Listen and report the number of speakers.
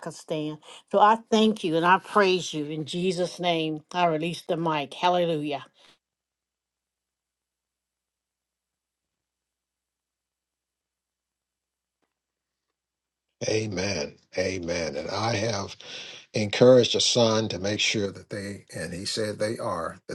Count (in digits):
2